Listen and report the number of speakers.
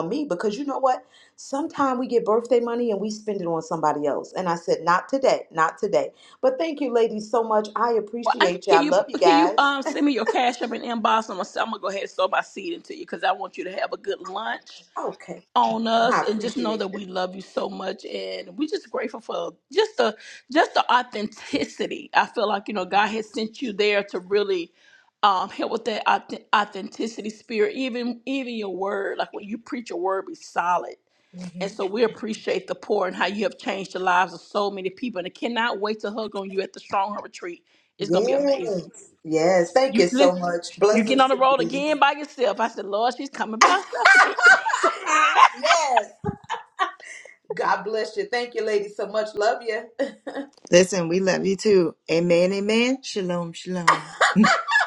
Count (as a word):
three